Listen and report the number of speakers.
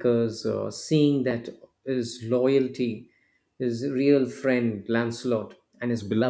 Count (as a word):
one